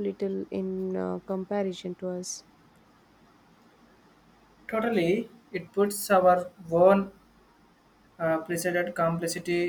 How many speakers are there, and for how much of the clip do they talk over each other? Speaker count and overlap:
two, no overlap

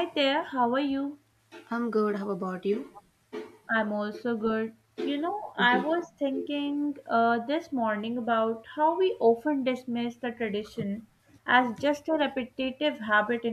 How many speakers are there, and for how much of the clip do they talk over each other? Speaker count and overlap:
two, about 3%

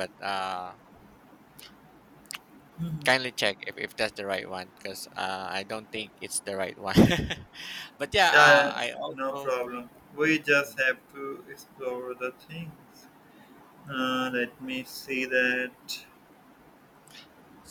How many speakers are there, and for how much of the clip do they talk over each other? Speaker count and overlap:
two, about 5%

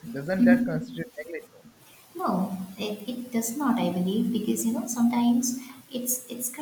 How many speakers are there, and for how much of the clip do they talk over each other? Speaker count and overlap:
two, no overlap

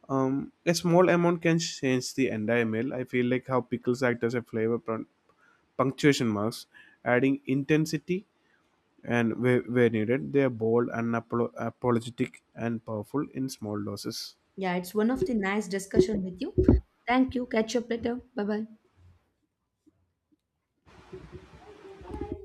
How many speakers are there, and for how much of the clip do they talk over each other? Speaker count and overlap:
two, no overlap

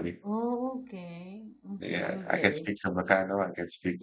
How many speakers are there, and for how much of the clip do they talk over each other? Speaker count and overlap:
two, about 22%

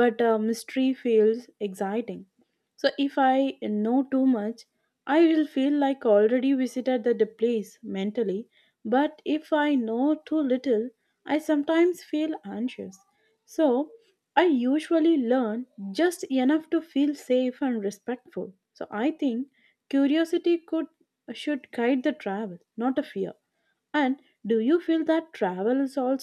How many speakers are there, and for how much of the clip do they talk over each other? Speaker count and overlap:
one, no overlap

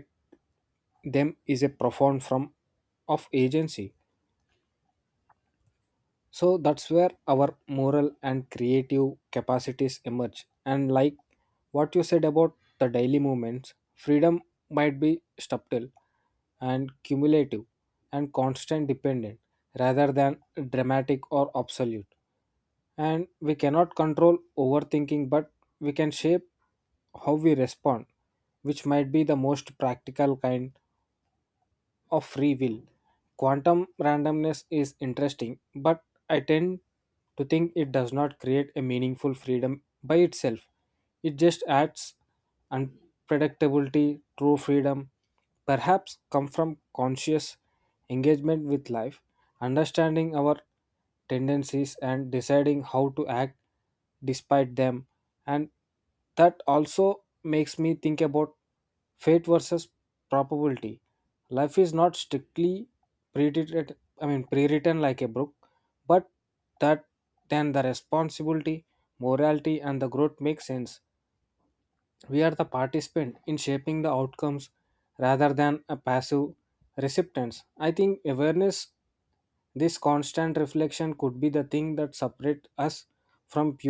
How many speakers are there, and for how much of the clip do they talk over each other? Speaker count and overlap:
one, no overlap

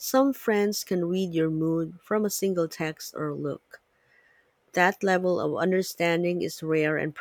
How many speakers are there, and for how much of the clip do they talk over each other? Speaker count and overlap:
one, no overlap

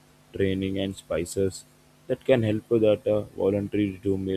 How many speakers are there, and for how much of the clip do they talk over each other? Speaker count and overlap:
one, no overlap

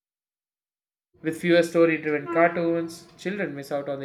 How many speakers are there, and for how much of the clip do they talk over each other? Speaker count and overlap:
one, no overlap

